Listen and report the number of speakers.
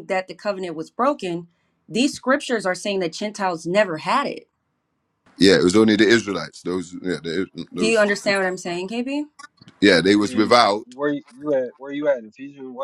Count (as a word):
three